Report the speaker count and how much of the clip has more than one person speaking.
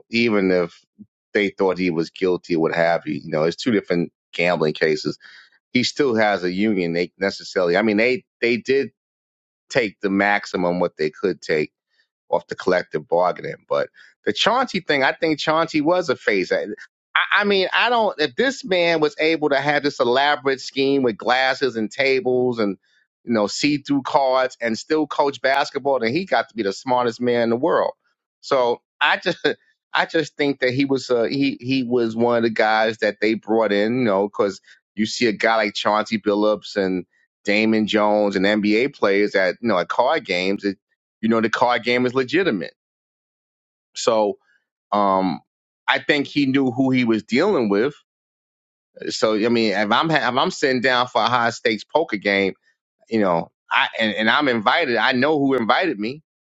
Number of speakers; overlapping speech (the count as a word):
one, no overlap